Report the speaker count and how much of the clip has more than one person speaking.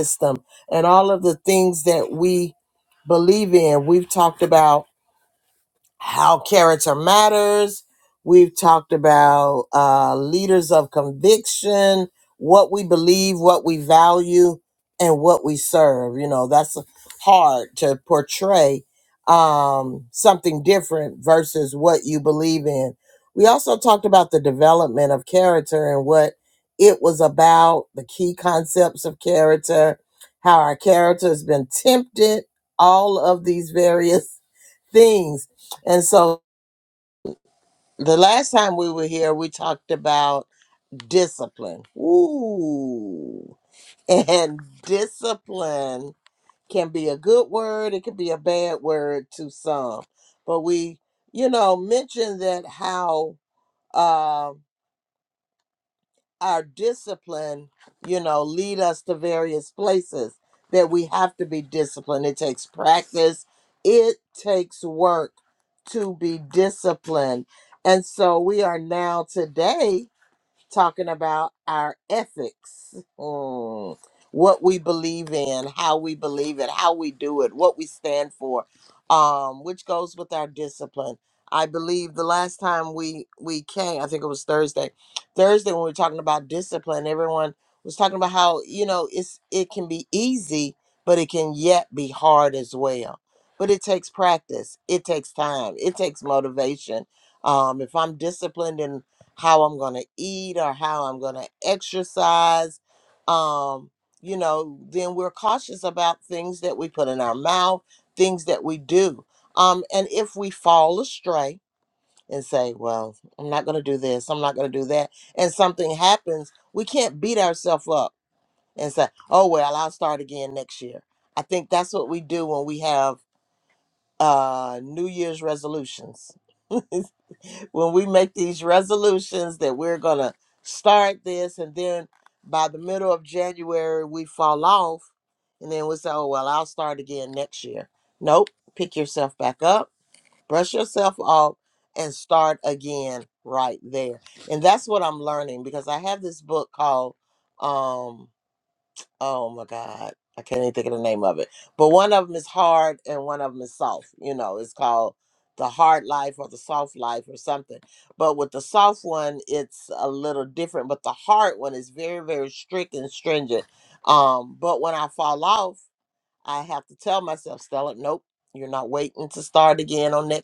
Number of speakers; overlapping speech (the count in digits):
1, no overlap